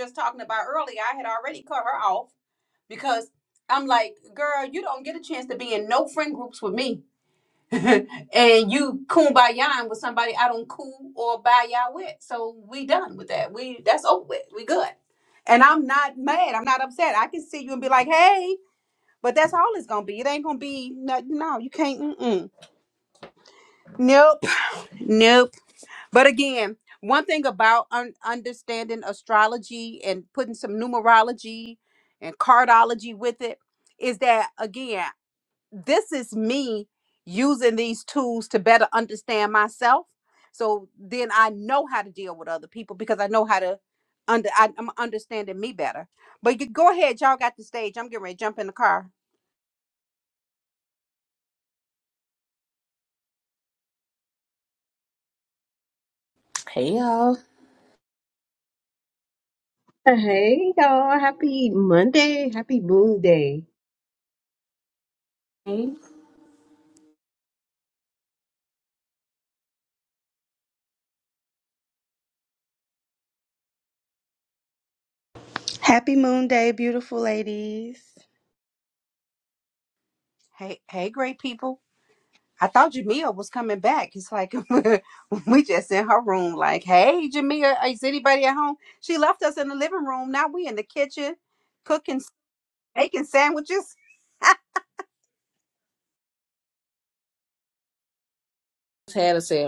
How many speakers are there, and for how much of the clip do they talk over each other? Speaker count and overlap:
4, no overlap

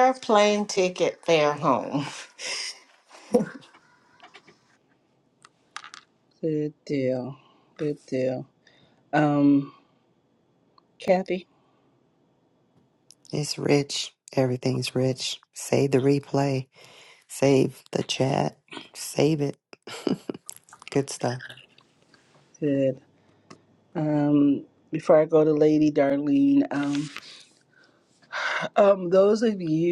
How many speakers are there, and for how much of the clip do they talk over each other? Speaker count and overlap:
3, no overlap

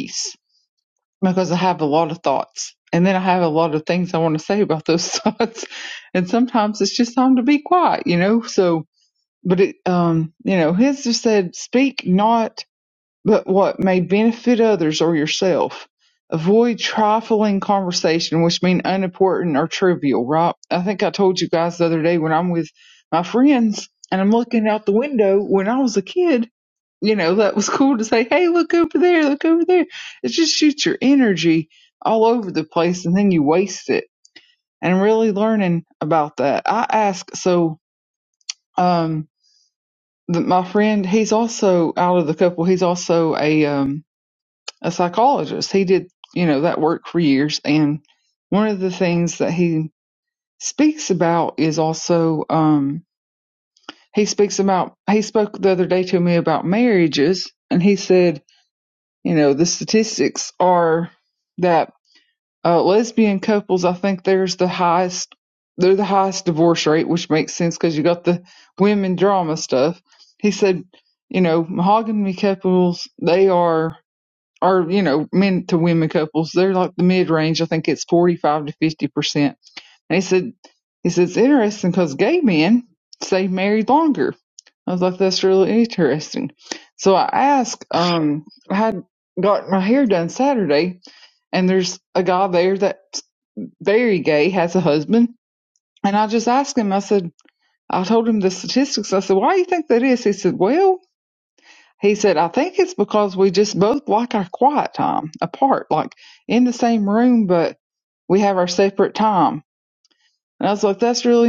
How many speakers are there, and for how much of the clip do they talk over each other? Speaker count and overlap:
1, no overlap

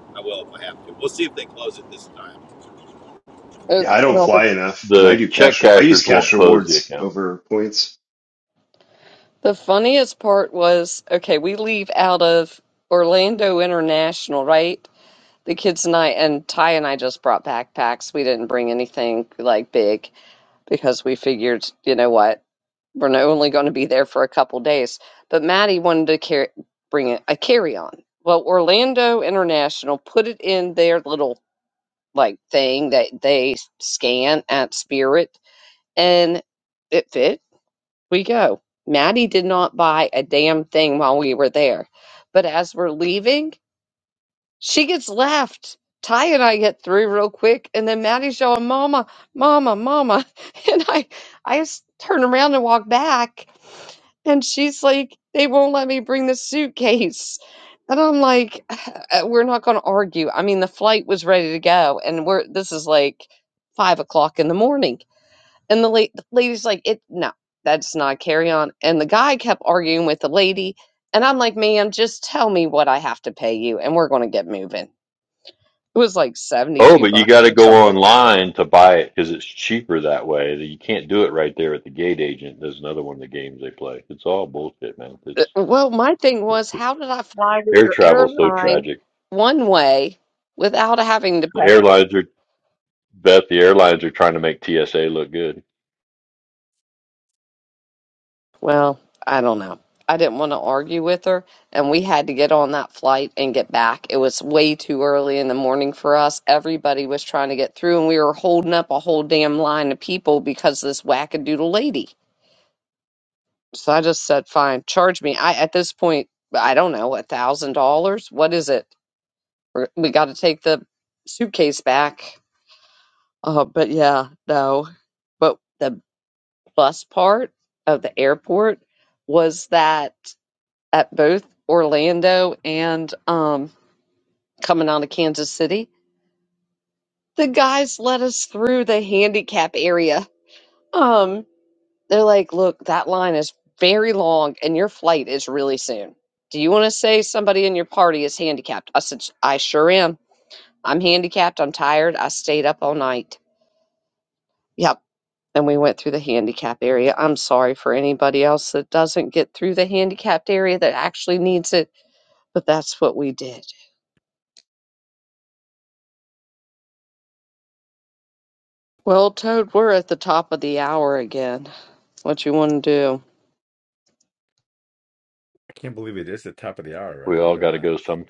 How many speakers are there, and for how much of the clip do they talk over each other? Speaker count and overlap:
5, about 3%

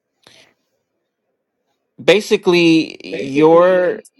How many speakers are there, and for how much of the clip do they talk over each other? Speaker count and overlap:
1, no overlap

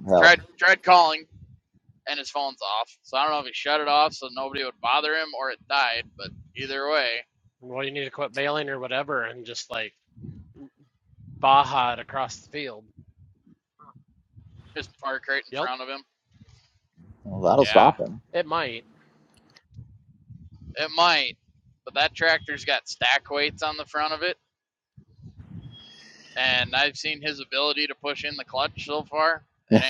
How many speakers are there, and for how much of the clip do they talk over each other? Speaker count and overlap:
3, about 3%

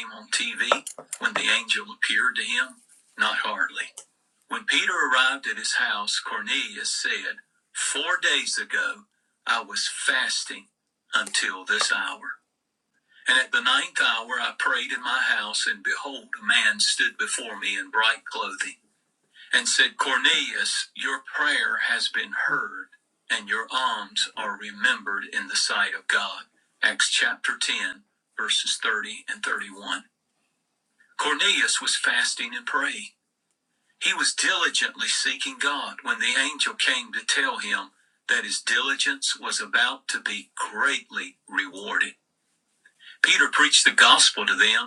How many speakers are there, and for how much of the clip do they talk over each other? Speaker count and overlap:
1, no overlap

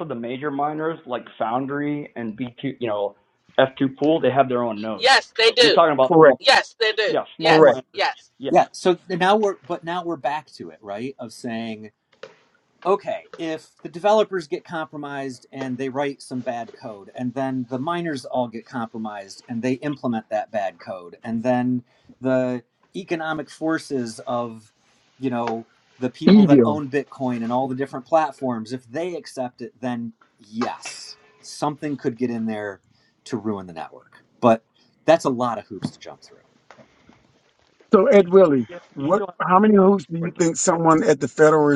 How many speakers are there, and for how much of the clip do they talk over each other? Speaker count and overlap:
4, about 7%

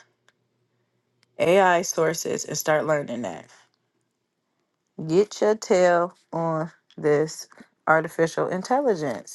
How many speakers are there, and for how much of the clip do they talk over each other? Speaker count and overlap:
1, no overlap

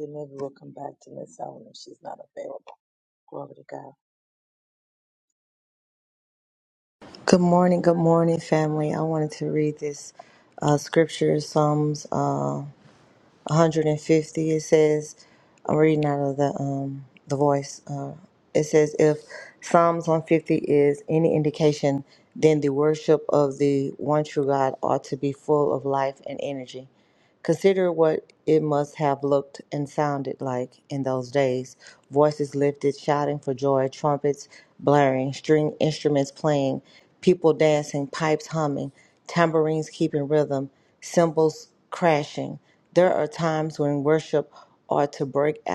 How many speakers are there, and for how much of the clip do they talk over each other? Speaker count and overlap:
2, no overlap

